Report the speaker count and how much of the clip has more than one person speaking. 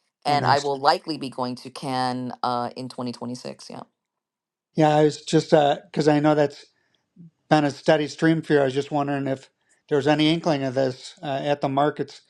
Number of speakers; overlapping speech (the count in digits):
2, about 3%